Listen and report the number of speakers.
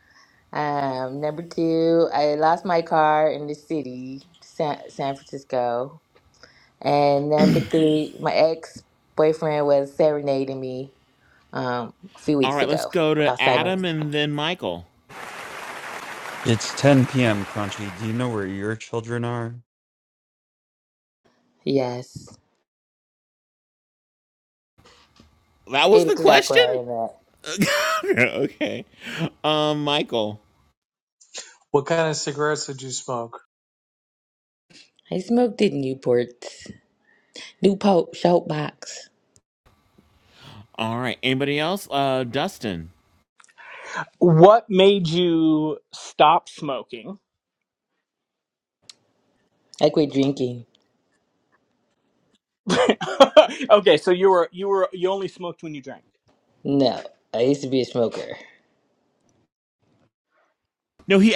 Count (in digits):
5